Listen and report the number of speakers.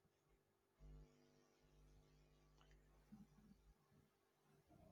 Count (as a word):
zero